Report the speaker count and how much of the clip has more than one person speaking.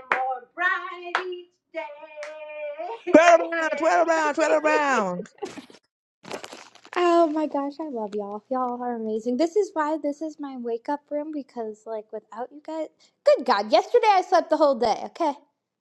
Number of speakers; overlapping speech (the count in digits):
3, no overlap